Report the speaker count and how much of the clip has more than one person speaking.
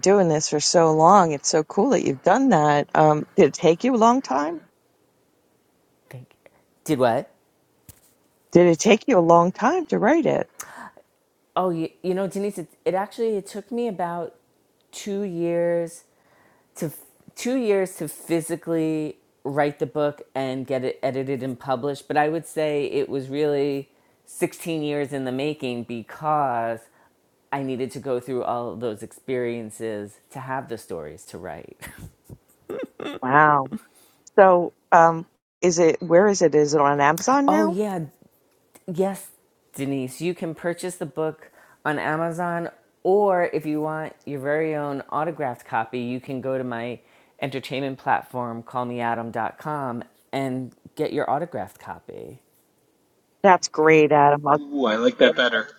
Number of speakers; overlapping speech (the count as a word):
three, about 1%